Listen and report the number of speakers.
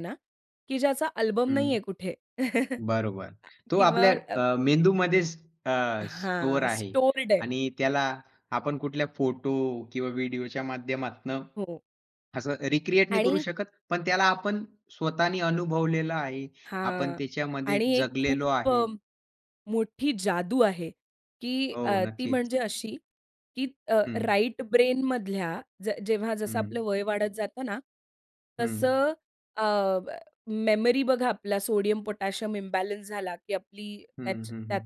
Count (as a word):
two